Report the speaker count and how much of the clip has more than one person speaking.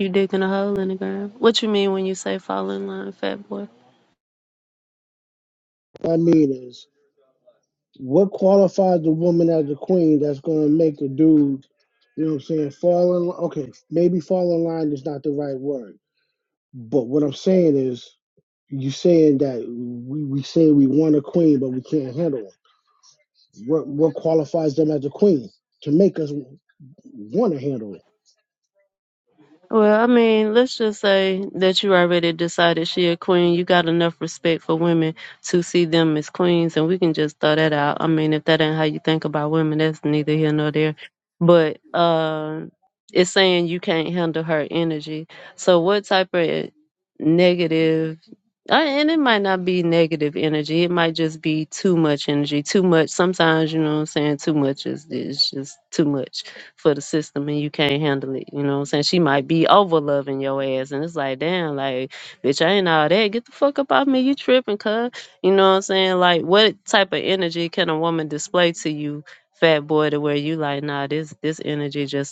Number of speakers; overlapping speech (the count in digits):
2, no overlap